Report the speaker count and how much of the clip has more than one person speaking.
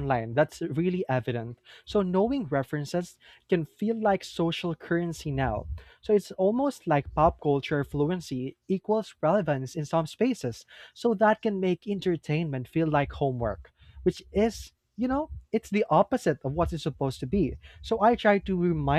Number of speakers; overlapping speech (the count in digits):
1, no overlap